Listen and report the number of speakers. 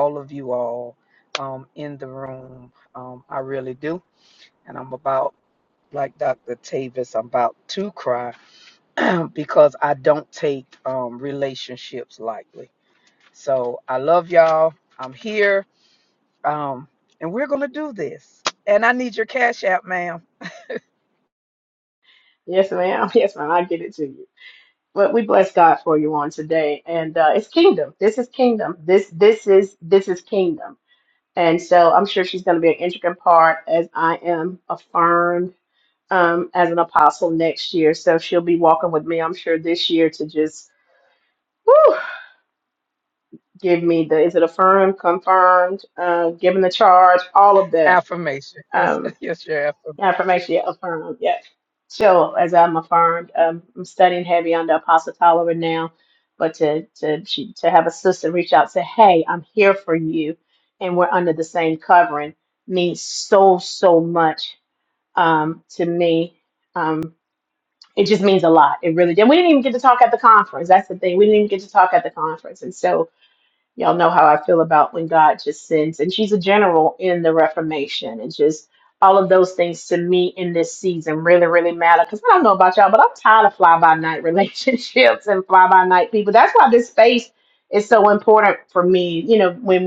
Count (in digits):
2